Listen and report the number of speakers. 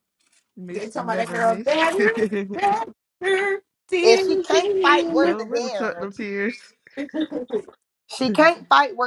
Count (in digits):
3